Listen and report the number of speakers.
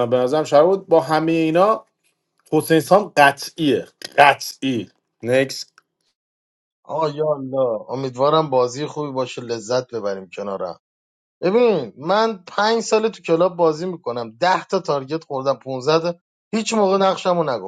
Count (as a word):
two